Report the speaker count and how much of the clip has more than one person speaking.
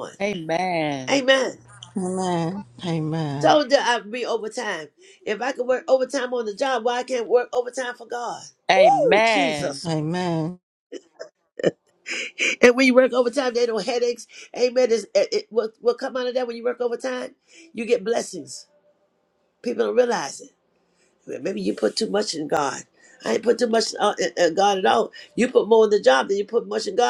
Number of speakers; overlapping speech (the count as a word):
three, about 4%